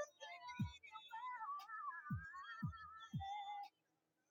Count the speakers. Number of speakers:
zero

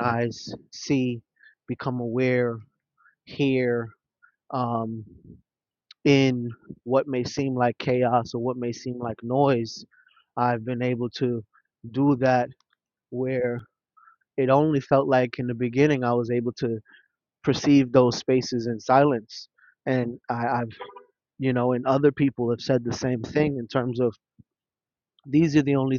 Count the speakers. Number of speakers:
one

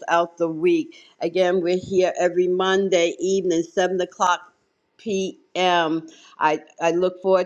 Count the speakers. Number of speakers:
one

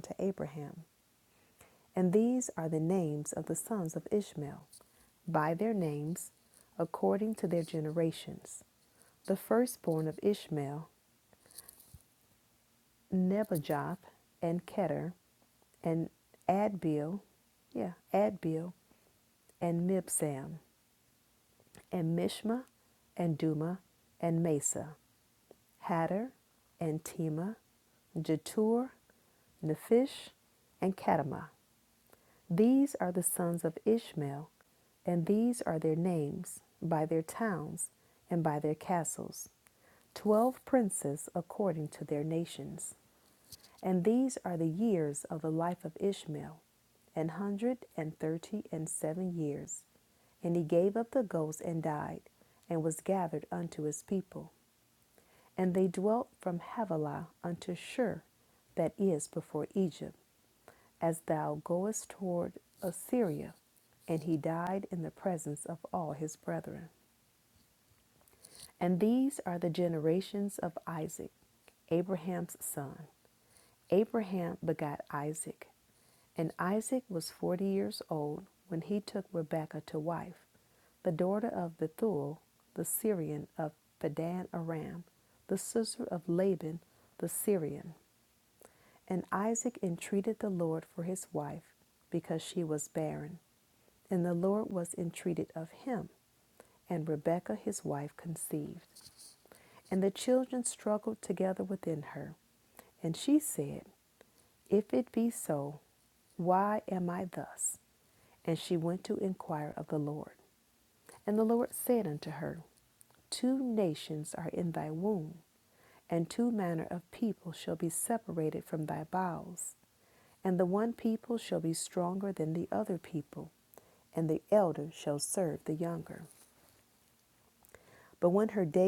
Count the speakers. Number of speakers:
one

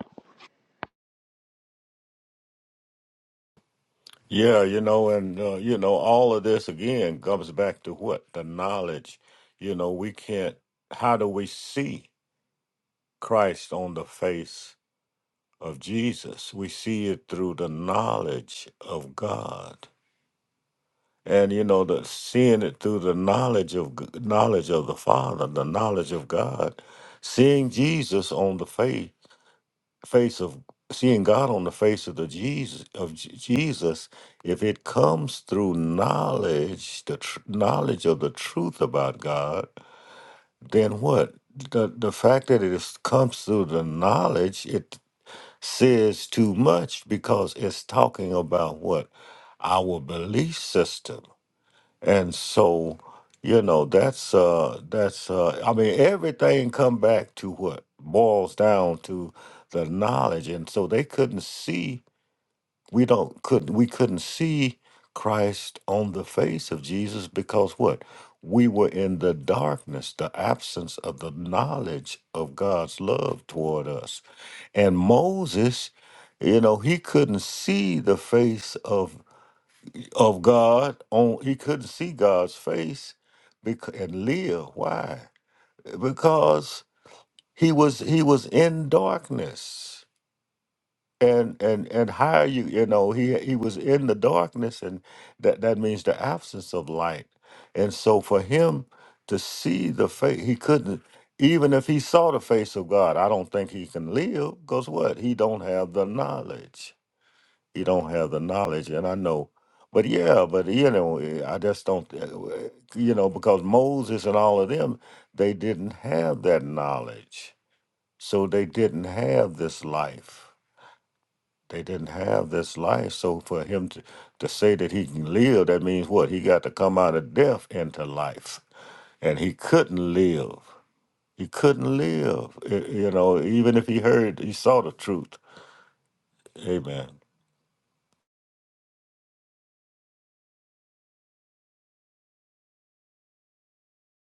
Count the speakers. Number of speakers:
one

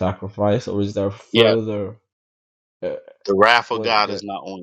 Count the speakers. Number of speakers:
two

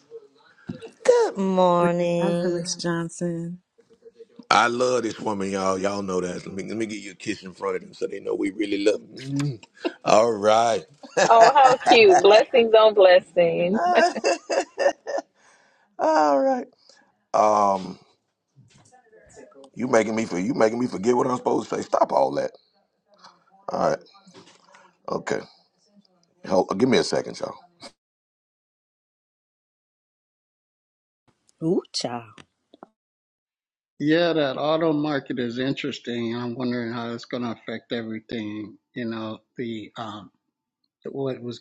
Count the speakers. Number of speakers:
five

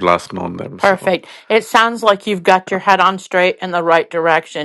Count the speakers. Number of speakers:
two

